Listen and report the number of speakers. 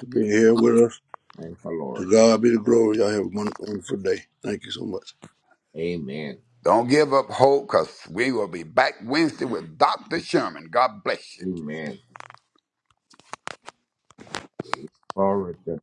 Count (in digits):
3